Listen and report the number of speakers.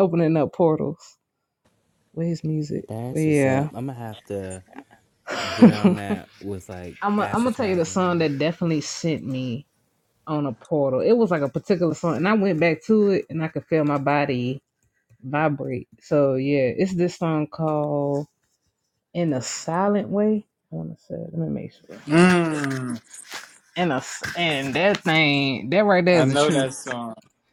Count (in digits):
3